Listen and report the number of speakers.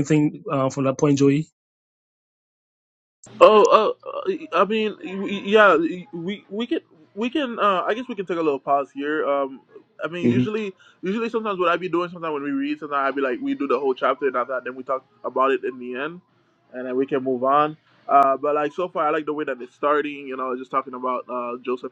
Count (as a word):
two